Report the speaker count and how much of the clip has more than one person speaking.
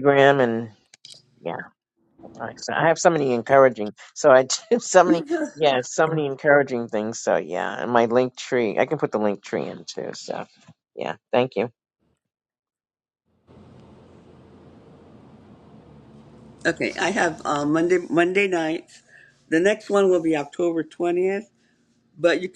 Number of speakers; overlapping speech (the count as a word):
two, no overlap